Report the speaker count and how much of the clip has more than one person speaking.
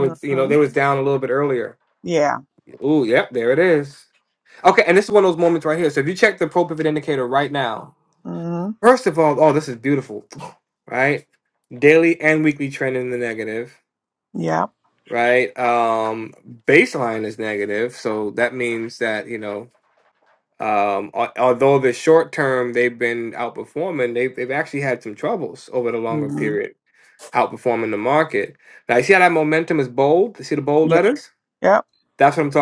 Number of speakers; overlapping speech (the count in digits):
2, about 4%